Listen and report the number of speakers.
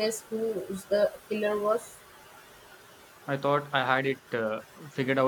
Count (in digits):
2